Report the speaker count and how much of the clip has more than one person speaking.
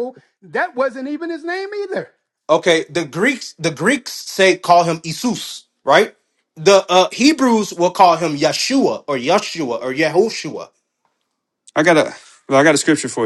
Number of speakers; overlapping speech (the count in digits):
3, no overlap